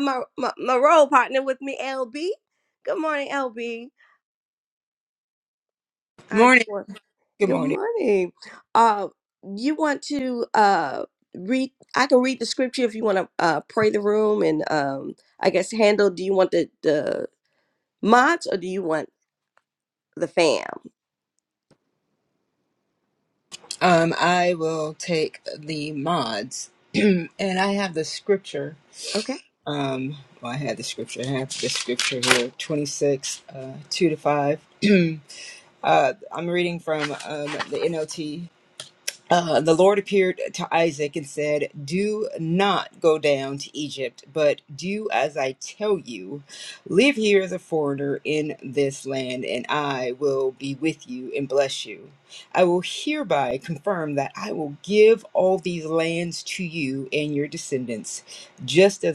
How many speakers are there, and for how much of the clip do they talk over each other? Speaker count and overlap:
2, about 1%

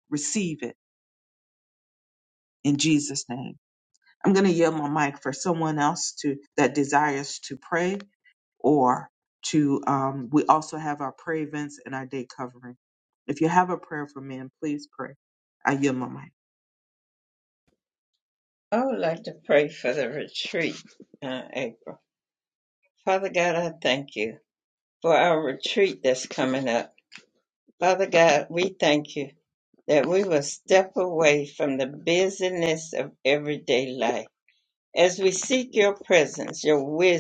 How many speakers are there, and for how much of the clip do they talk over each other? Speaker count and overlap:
2, no overlap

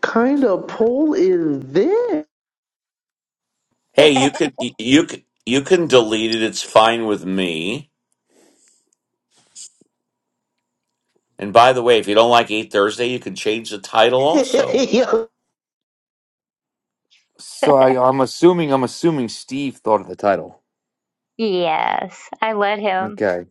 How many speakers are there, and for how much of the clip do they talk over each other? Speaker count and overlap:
4, about 1%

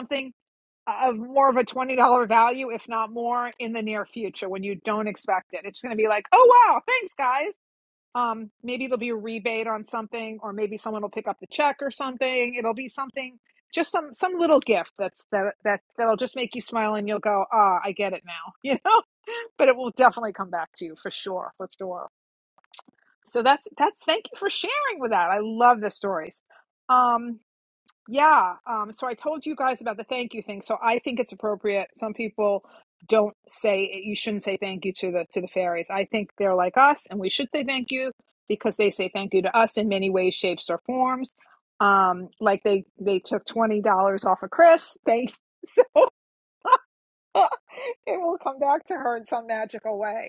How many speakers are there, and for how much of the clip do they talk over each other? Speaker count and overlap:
1, no overlap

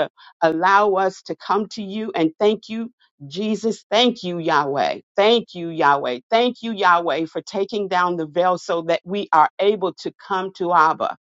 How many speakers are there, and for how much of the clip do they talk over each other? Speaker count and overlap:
1, no overlap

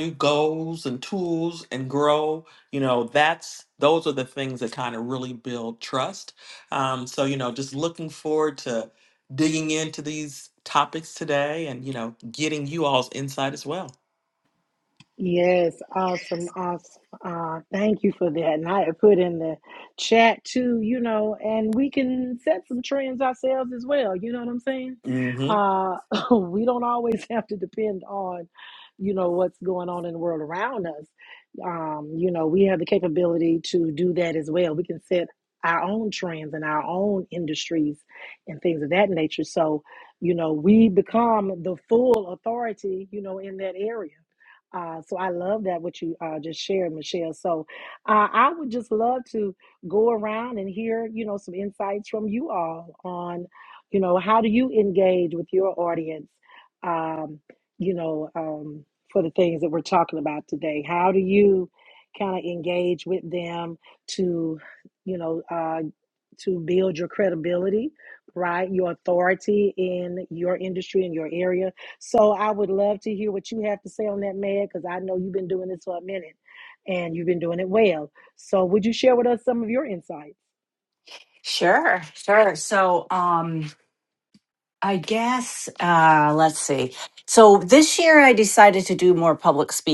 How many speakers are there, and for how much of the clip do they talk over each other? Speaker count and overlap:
3, under 1%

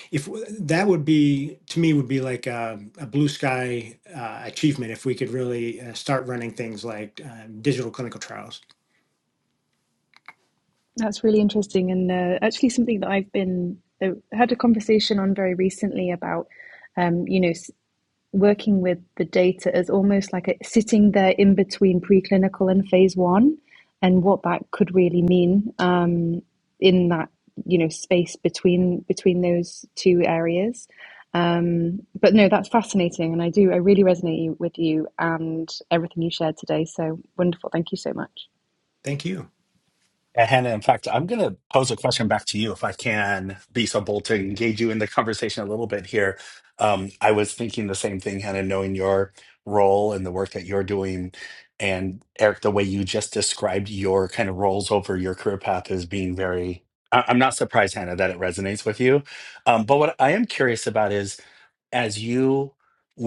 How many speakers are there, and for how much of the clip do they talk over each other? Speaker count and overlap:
3, no overlap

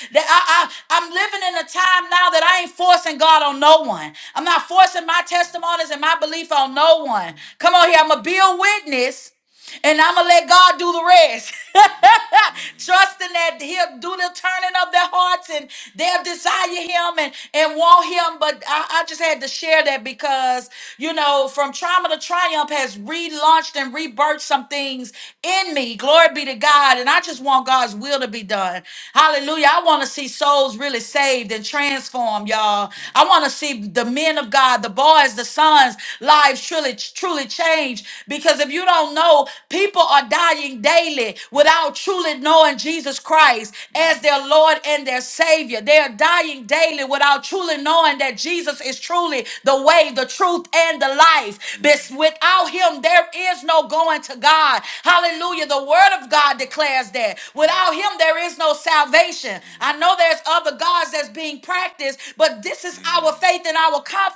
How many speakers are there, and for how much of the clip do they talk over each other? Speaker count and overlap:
1, no overlap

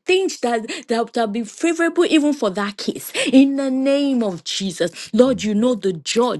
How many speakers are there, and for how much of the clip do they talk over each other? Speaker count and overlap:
1, no overlap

